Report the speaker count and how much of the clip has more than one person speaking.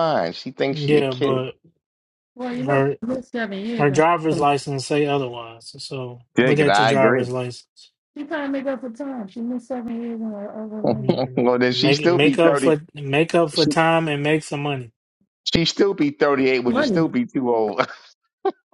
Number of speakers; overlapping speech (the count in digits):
3, about 23%